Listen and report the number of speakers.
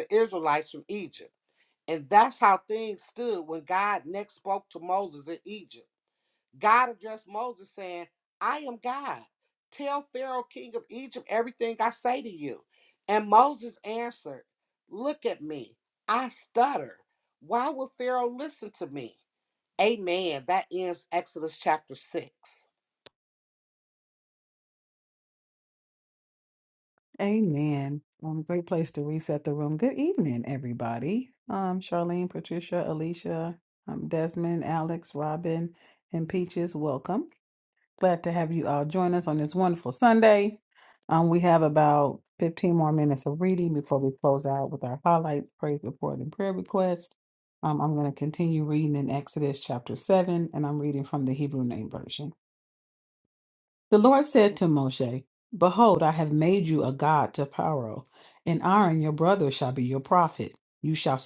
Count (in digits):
2